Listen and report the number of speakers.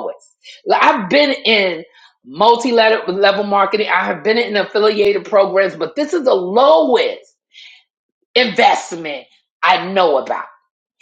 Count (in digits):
1